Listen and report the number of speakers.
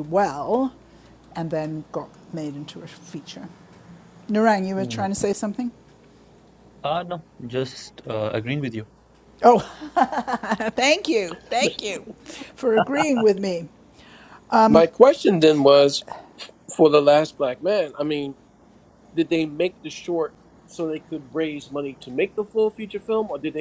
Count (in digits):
3